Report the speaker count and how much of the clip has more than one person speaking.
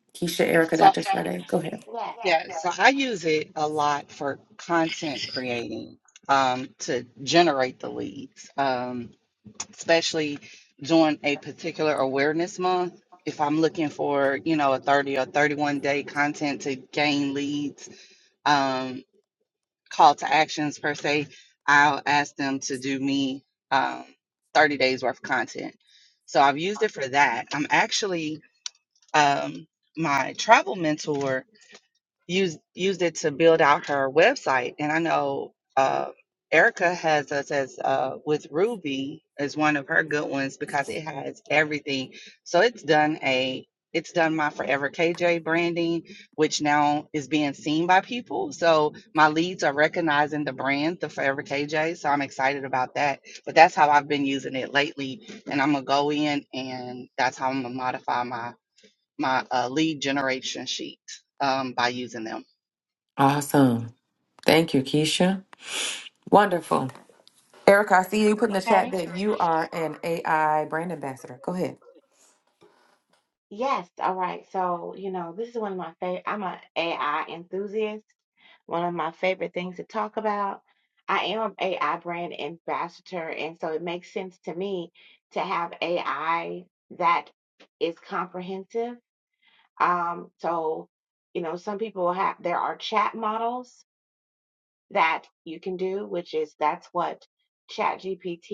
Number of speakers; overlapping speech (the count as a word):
three, under 1%